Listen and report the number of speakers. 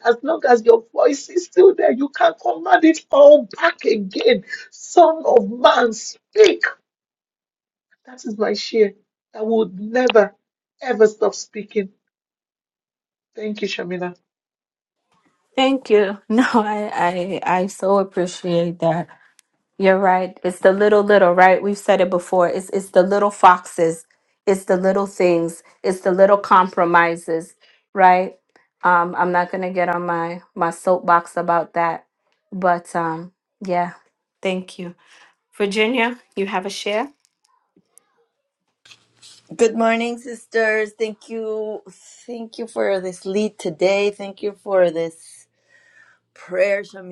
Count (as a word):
three